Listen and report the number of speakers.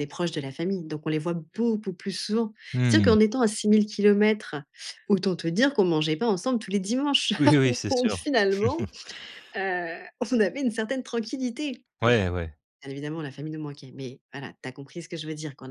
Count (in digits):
2